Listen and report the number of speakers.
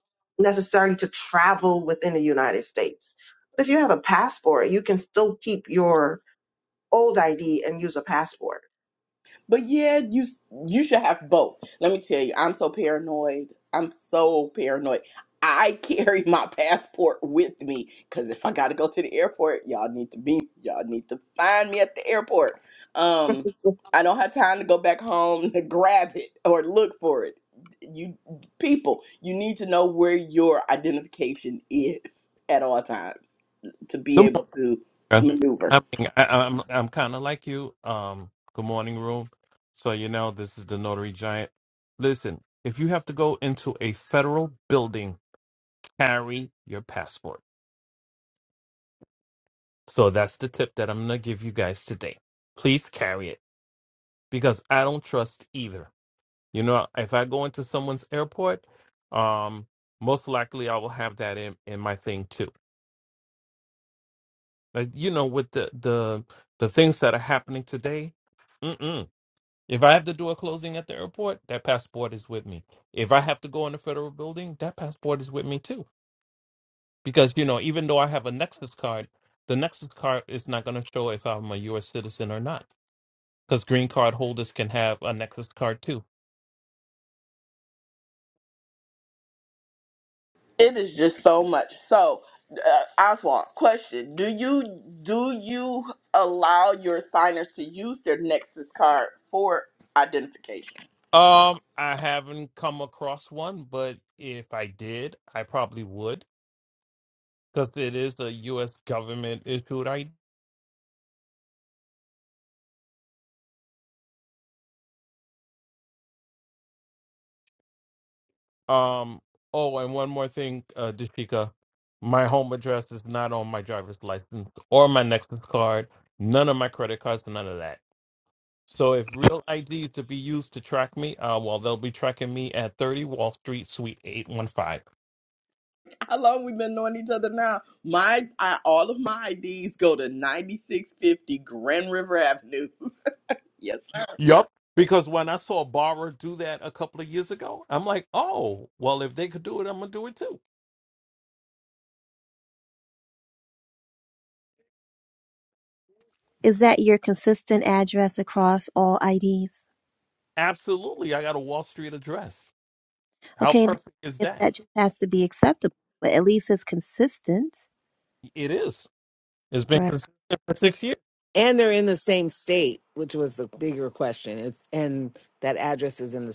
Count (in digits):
5